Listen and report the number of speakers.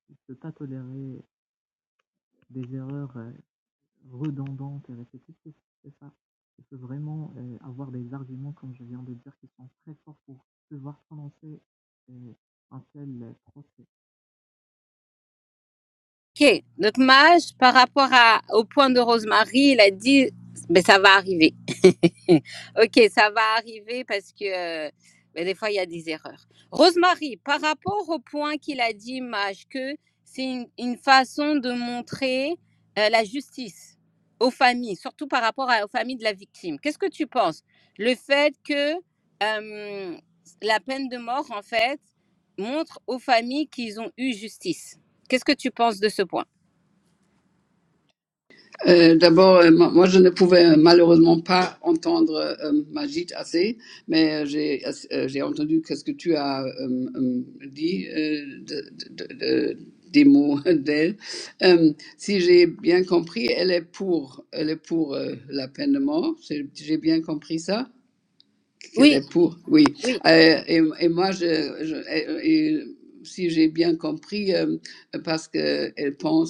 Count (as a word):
three